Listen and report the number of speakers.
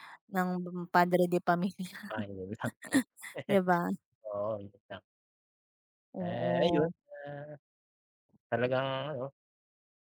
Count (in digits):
2